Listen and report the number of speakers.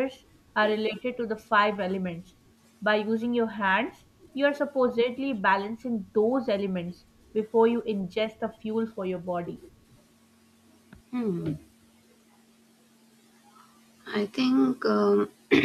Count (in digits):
2